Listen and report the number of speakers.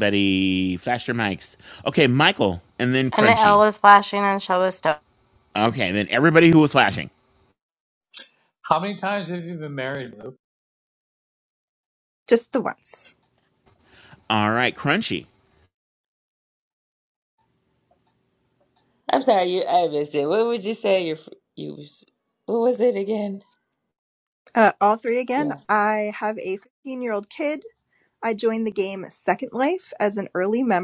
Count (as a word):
five